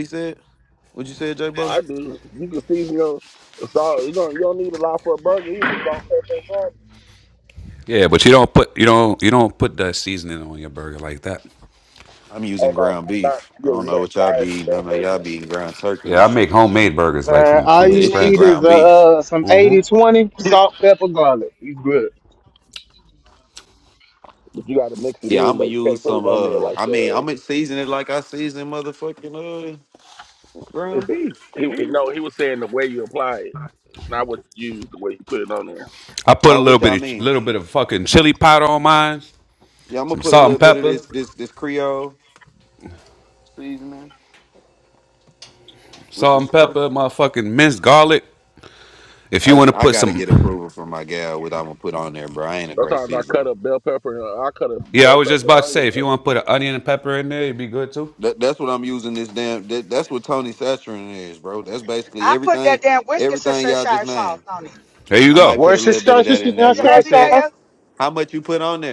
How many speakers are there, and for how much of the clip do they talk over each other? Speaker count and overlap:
5, about 24%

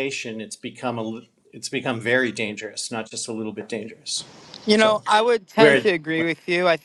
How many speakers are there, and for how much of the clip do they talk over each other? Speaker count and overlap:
2, about 8%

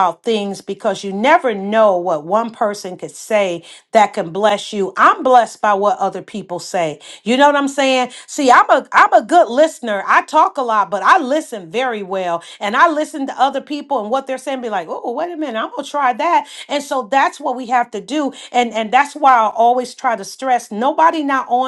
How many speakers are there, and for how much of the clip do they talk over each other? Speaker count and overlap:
1, no overlap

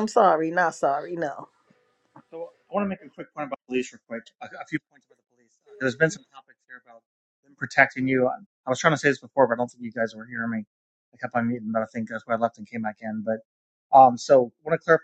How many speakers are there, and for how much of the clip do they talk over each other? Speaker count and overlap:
2, no overlap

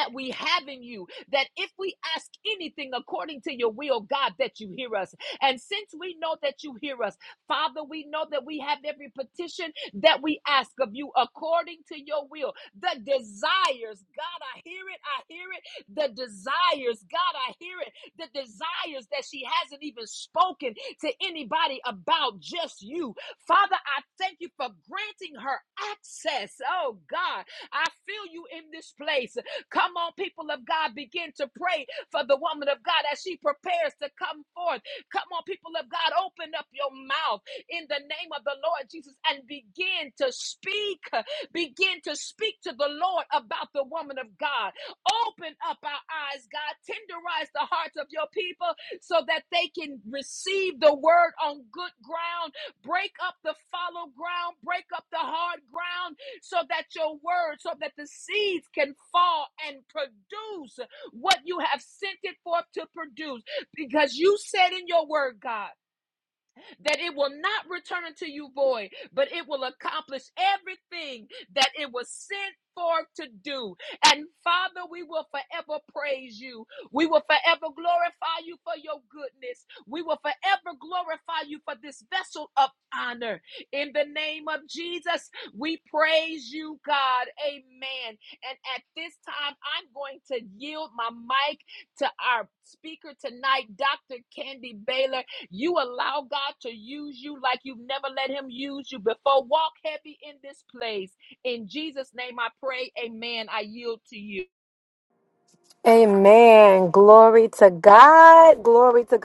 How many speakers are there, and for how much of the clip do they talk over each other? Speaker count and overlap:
2, no overlap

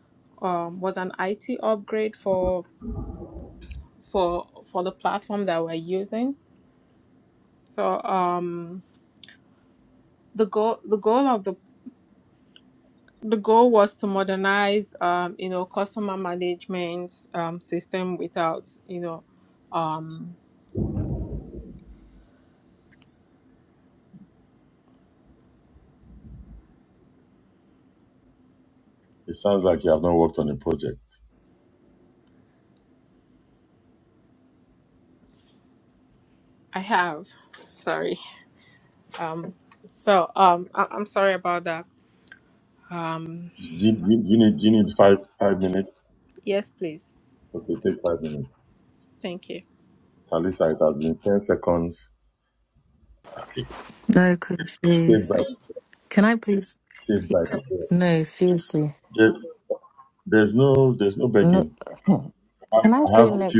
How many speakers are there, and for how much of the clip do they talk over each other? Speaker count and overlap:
3, about 2%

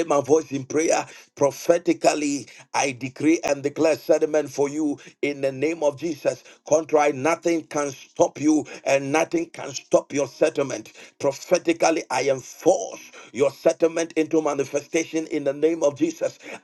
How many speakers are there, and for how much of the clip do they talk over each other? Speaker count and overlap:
1, no overlap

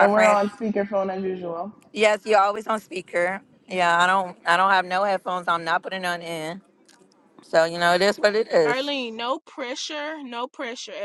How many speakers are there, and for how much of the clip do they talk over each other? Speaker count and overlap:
3, about 5%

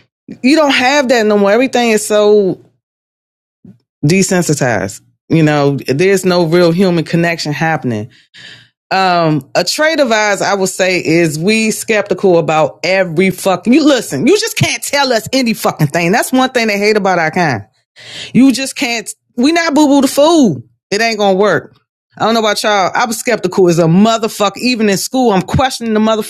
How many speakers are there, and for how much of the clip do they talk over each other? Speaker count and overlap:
1, no overlap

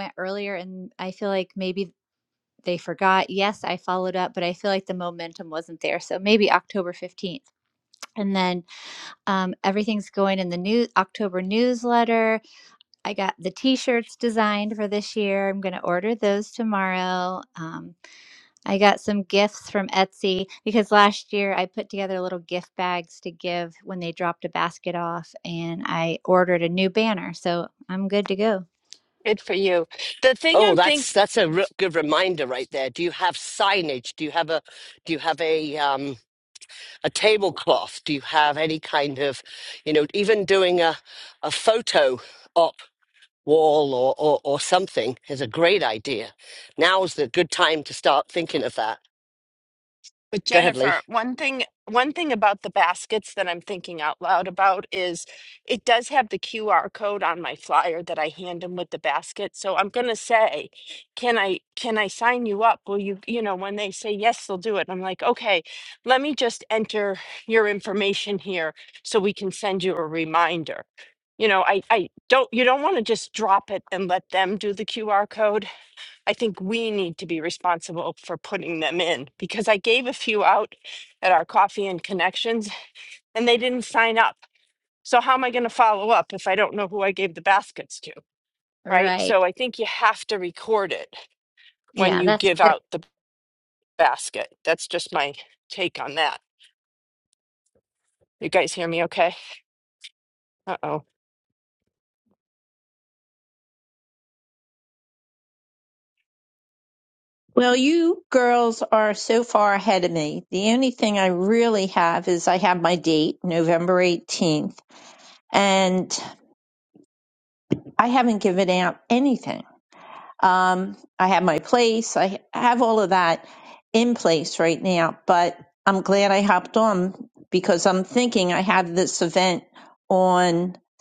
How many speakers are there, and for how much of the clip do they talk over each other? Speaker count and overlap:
4, about 2%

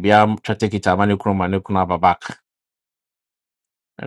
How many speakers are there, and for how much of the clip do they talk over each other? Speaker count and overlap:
1, no overlap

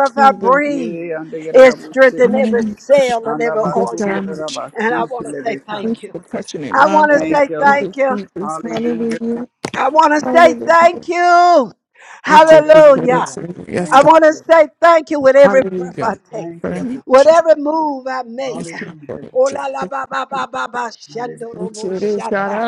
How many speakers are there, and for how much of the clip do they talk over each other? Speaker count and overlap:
3, about 57%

